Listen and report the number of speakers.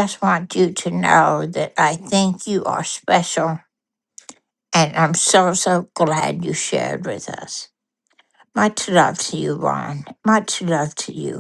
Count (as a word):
one